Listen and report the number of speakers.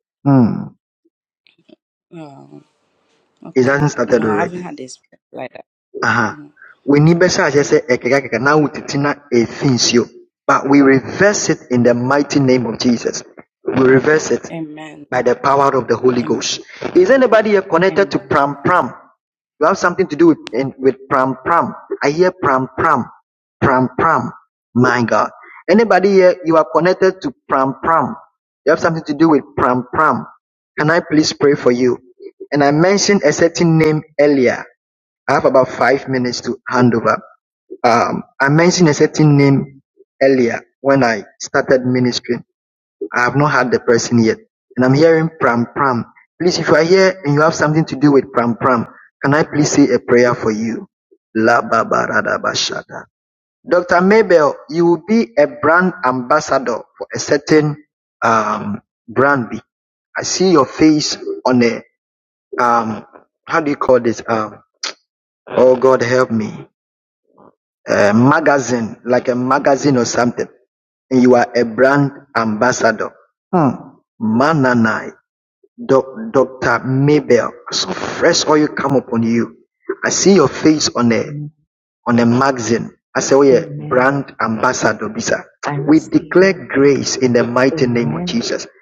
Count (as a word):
three